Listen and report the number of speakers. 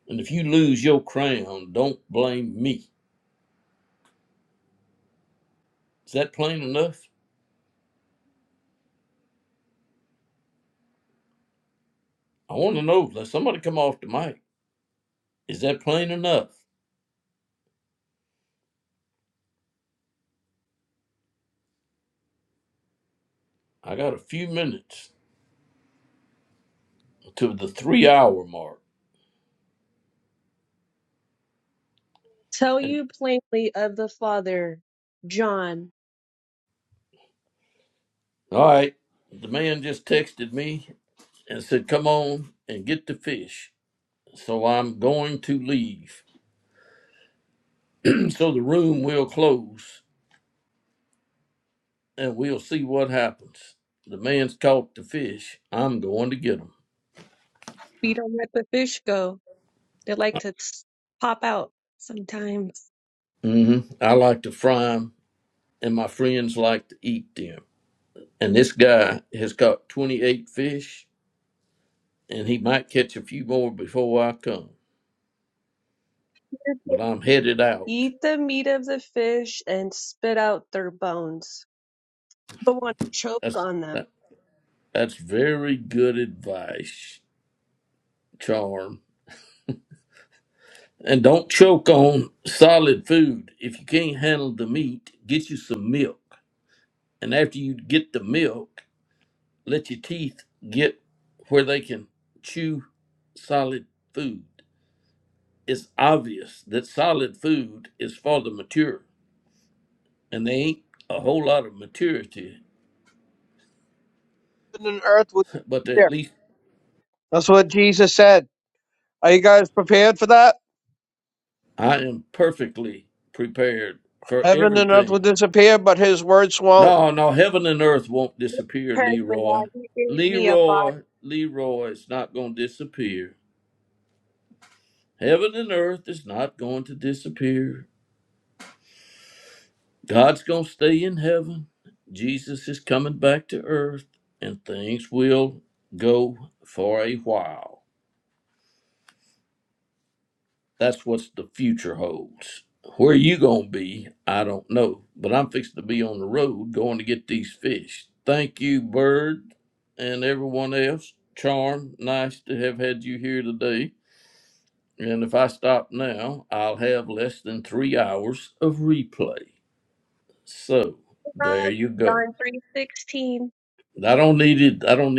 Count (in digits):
3